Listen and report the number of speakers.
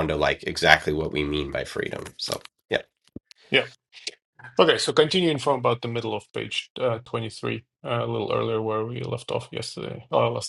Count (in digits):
2